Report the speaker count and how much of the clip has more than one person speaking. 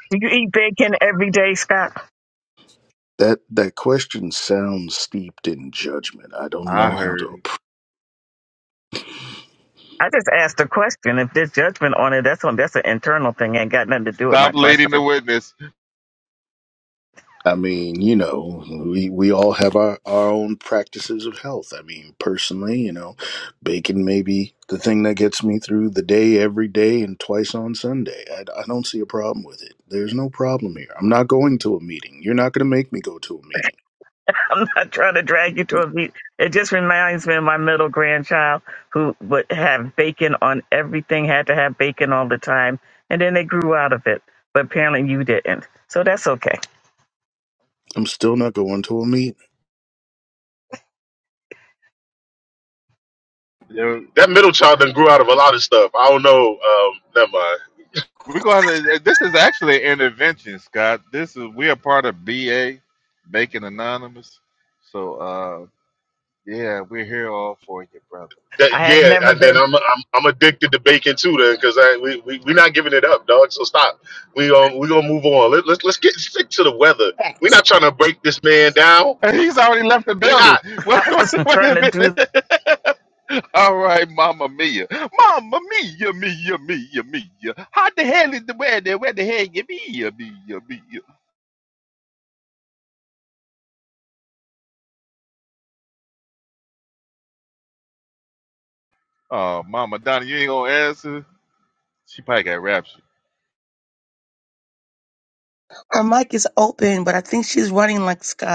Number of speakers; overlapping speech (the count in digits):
5, about 4%